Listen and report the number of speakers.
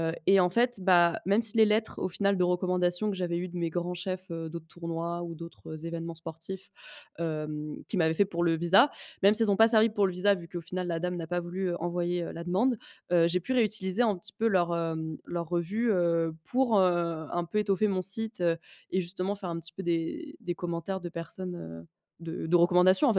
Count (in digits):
1